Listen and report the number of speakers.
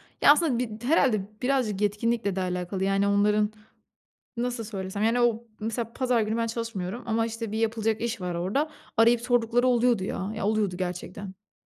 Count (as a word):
one